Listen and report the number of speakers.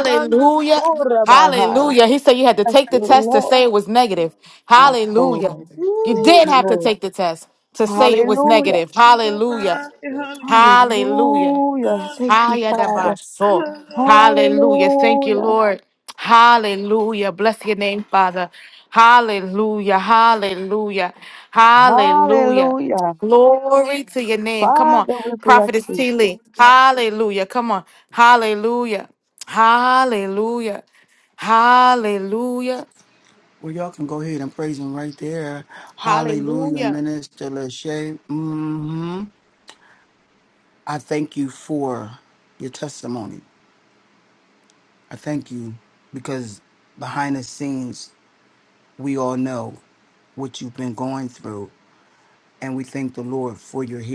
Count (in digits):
4